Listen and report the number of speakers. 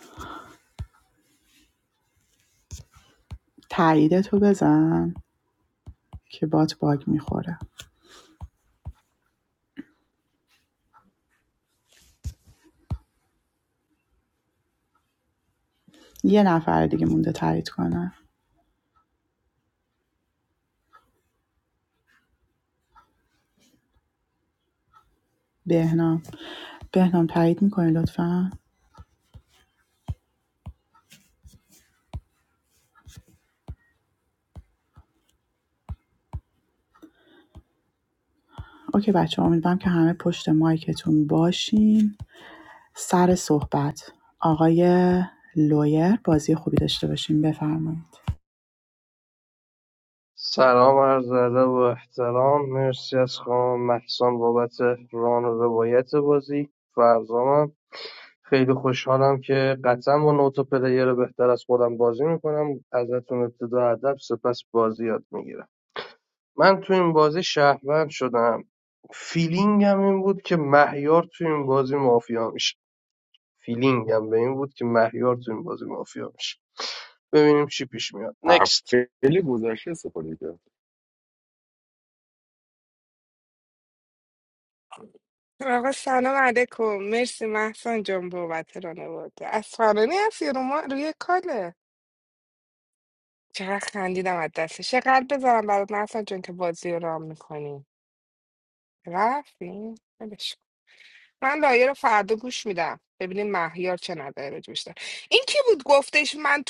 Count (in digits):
4